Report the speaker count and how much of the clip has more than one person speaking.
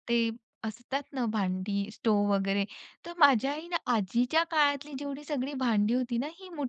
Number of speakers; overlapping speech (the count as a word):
one, no overlap